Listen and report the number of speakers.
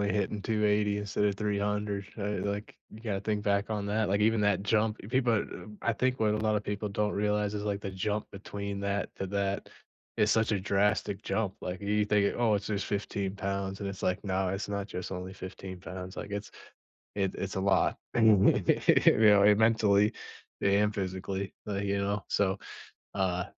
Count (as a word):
one